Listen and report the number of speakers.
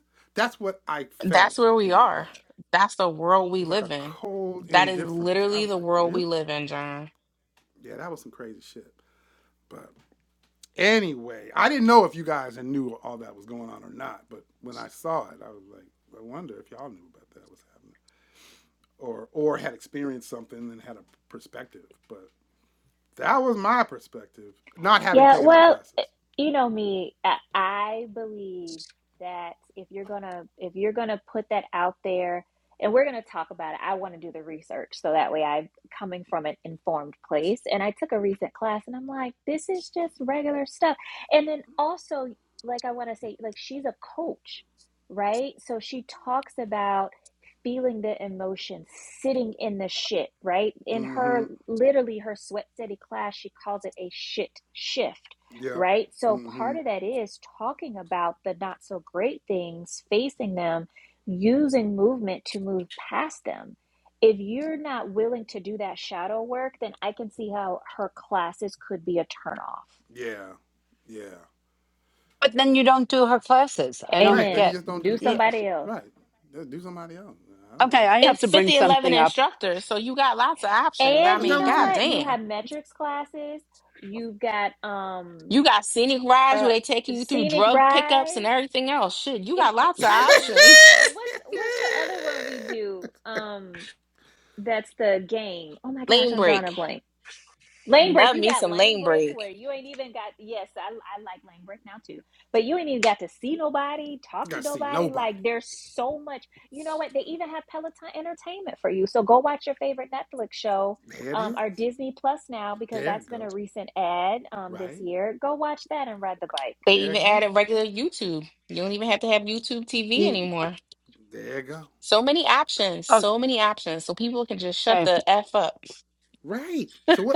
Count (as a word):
four